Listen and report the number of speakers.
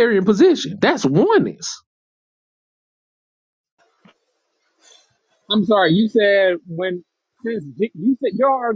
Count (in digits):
2